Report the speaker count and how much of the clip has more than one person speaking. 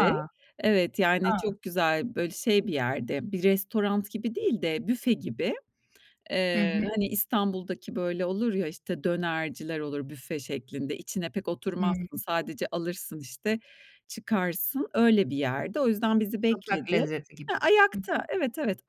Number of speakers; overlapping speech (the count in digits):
2, about 10%